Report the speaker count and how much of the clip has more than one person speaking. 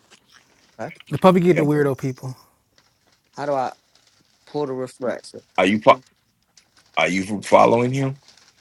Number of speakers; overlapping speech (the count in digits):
3, about 2%